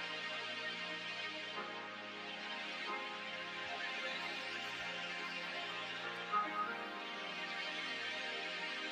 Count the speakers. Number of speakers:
0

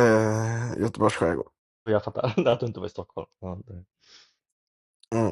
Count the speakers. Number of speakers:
2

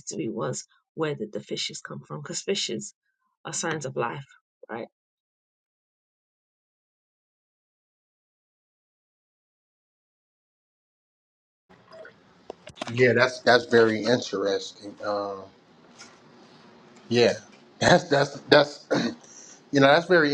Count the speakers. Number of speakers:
2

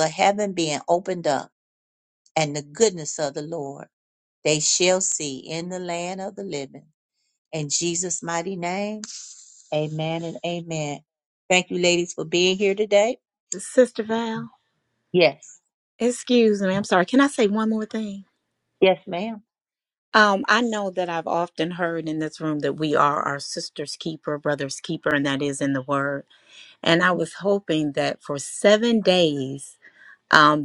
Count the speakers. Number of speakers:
2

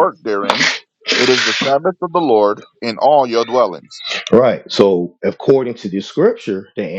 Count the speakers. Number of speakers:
2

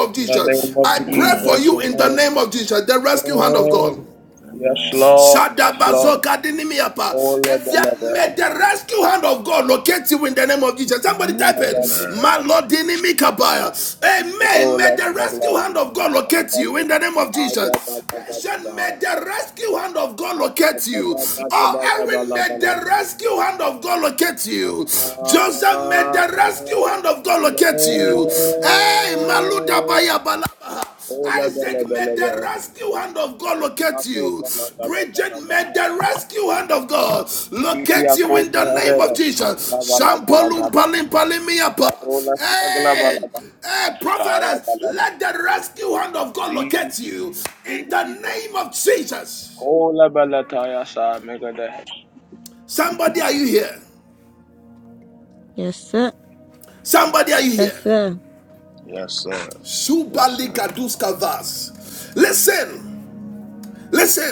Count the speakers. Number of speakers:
4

